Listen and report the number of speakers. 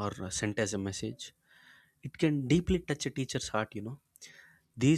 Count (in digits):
1